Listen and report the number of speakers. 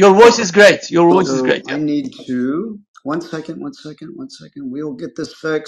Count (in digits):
2